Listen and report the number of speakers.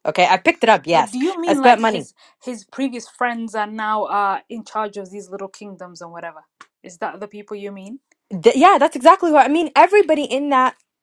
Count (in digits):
2